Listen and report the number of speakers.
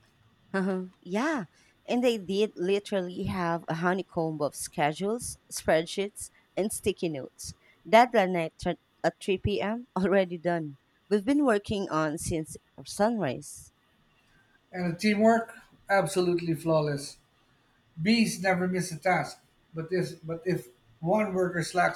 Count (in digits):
2